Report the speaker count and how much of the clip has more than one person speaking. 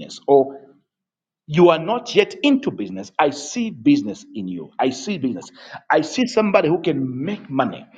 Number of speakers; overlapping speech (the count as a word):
one, no overlap